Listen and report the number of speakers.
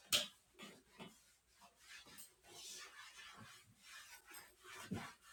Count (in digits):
0